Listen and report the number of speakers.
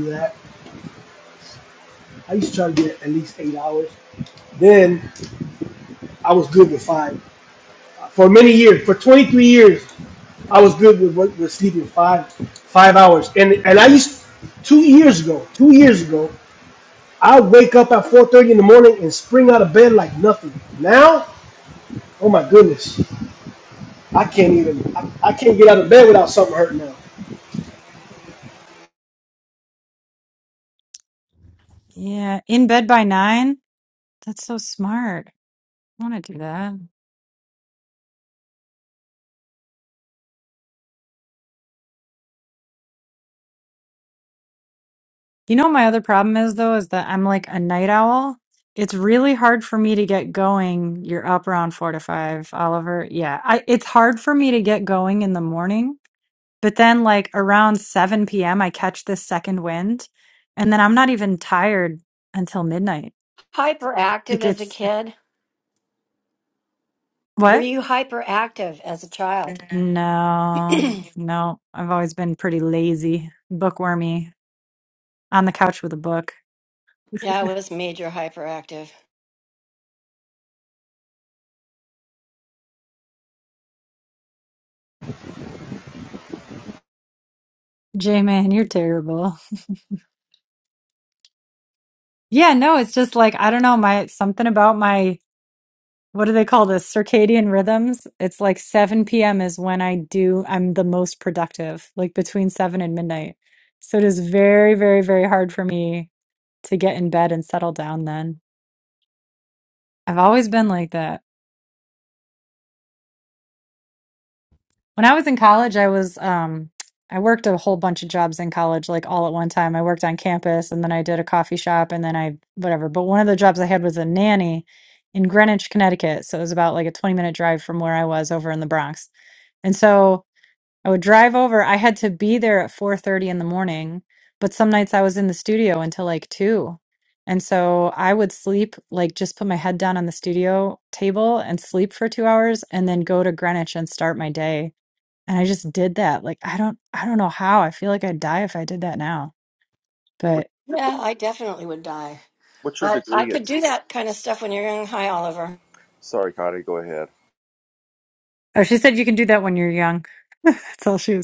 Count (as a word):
four